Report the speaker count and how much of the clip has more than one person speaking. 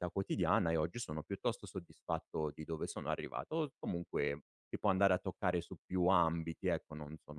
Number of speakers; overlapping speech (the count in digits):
1, no overlap